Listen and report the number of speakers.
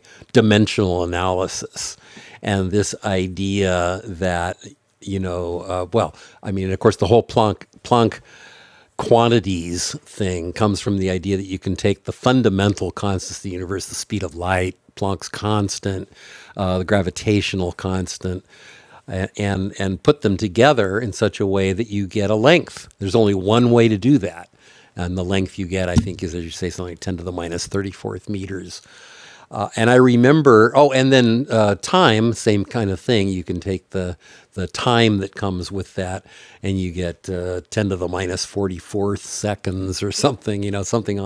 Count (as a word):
one